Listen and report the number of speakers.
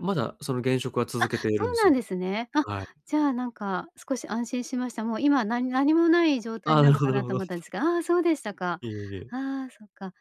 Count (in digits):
2